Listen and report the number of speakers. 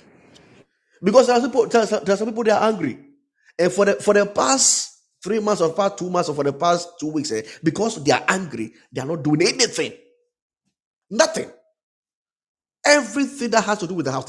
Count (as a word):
one